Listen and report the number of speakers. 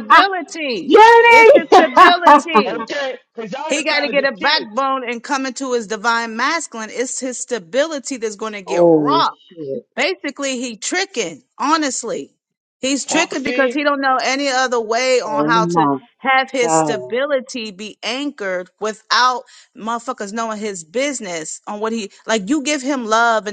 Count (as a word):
three